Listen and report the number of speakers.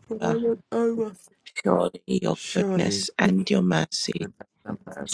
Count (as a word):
two